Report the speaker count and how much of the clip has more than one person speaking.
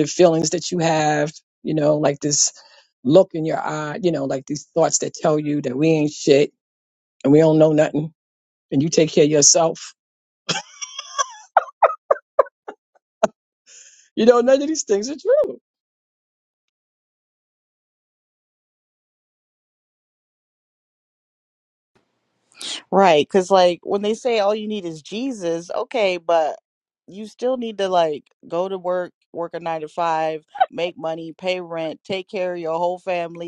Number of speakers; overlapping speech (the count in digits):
2, no overlap